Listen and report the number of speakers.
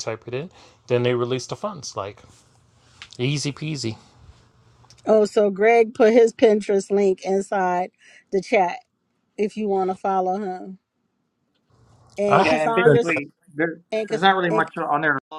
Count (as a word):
three